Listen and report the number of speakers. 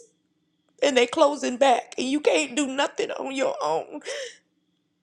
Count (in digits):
1